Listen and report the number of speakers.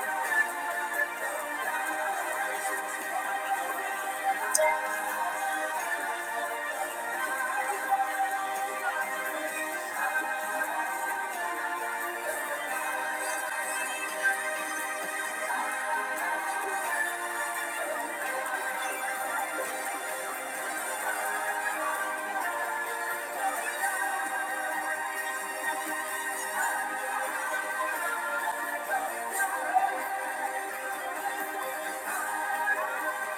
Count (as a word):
zero